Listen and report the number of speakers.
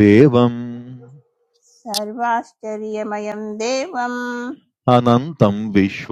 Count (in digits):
2